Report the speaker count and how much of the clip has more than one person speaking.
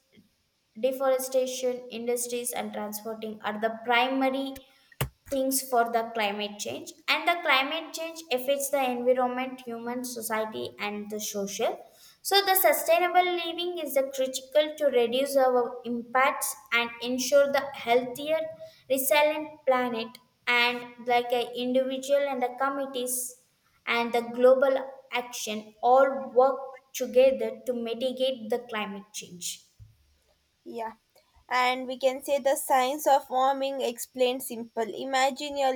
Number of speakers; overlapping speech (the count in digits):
2, no overlap